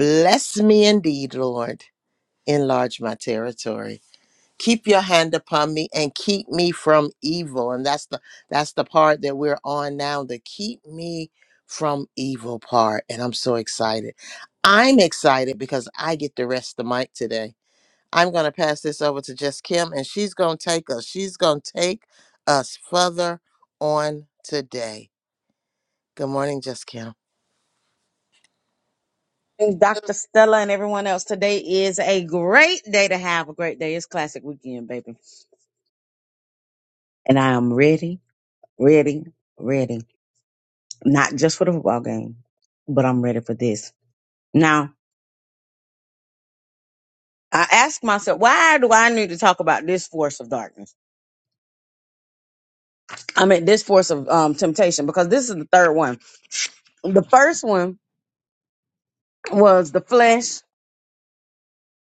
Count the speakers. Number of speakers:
2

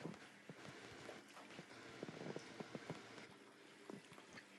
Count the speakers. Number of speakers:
0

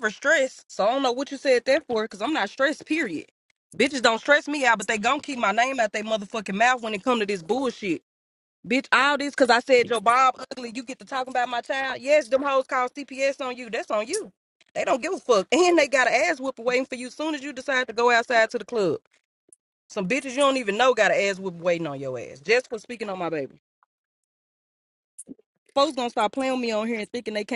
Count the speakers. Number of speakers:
1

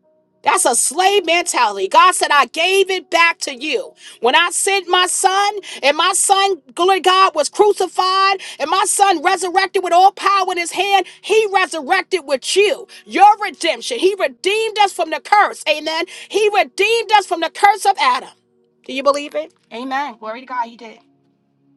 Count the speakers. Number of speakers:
1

